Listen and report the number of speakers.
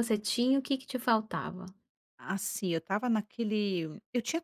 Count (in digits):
2